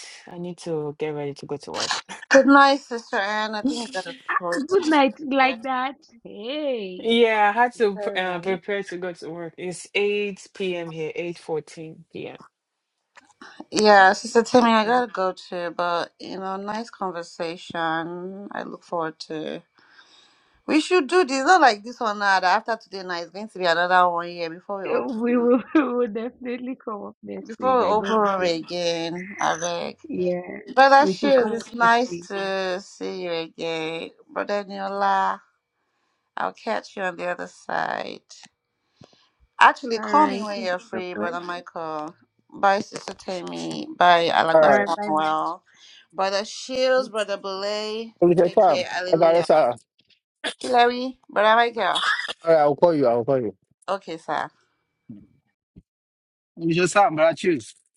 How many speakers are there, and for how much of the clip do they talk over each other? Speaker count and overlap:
4, about 12%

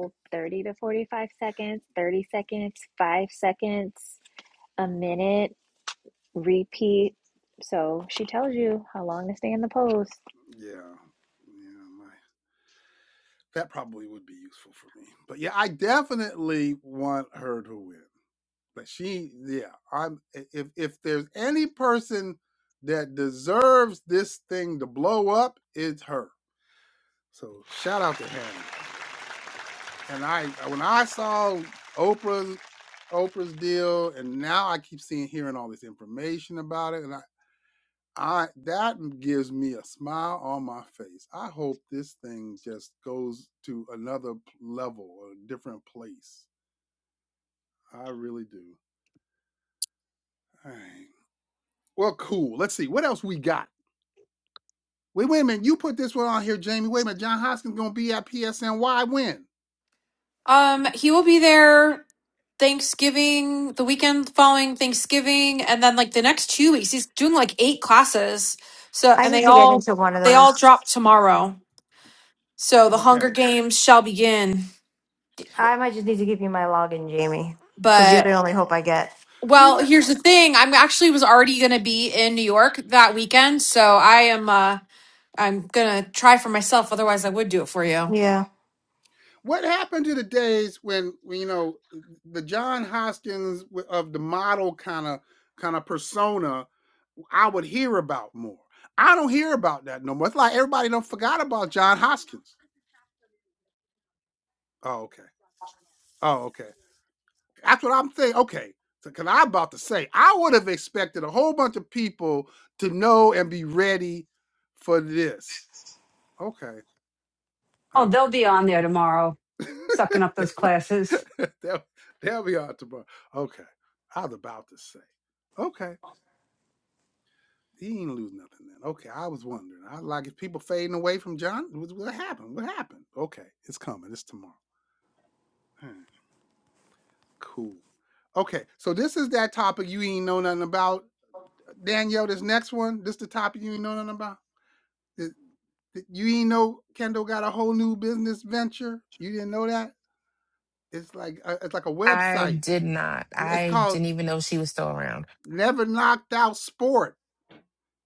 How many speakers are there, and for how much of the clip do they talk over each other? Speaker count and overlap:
6, about 3%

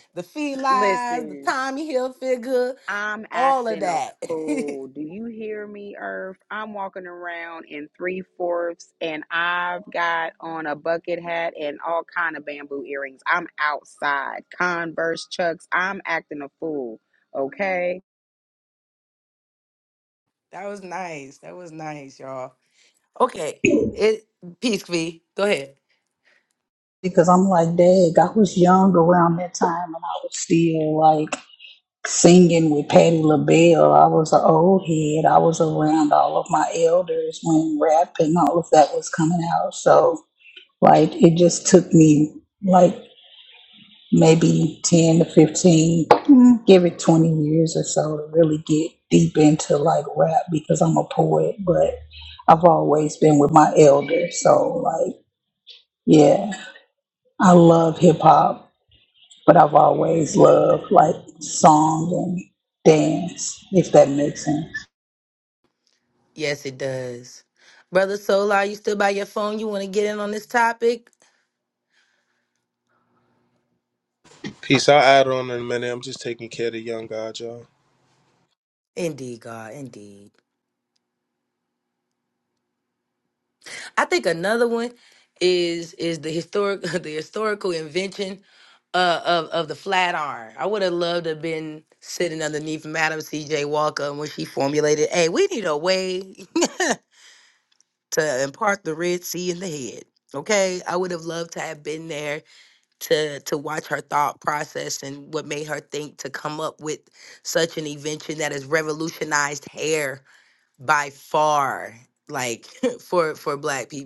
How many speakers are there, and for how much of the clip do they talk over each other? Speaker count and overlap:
4, about 2%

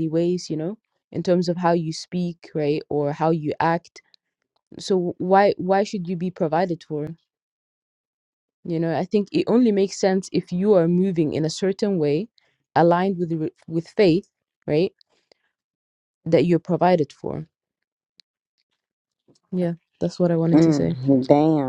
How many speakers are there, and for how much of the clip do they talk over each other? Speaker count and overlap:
2, about 2%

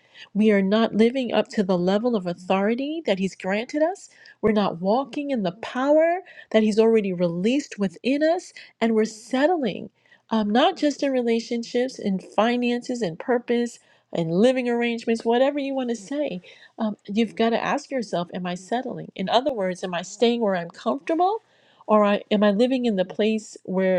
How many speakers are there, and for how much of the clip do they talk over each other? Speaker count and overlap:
1, no overlap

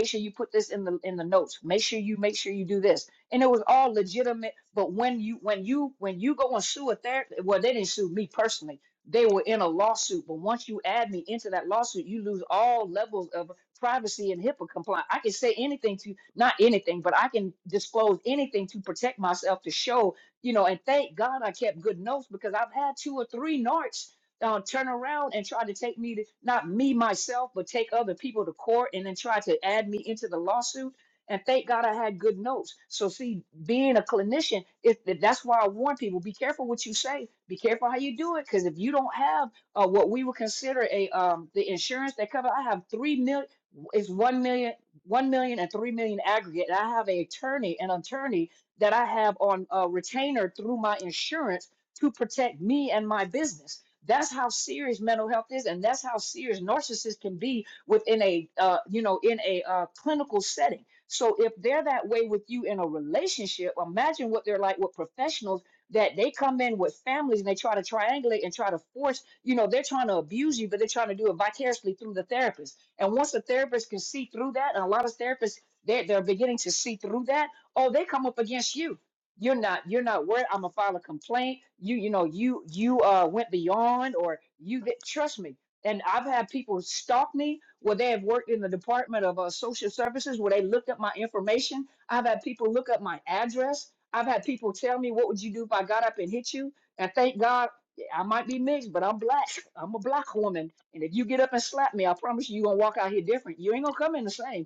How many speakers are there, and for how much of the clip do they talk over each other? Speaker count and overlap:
1, no overlap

